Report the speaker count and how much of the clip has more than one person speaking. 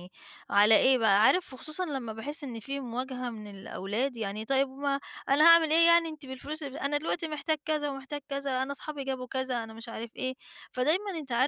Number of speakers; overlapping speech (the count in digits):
1, no overlap